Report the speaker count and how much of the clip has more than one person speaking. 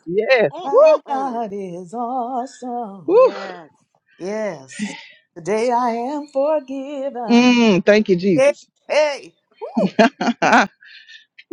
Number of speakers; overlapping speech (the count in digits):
3, about 11%